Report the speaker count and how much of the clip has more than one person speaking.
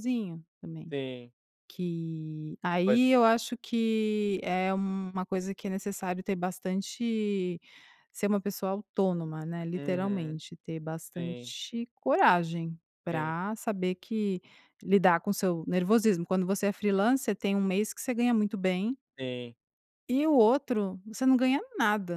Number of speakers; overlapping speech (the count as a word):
two, about 5%